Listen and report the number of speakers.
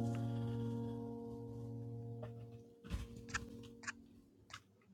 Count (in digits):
0